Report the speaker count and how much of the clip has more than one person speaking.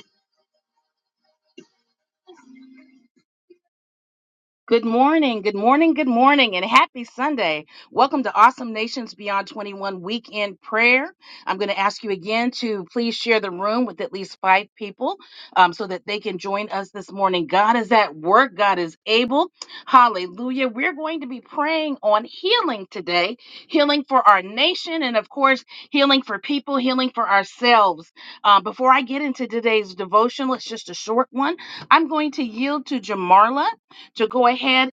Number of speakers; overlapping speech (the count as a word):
one, no overlap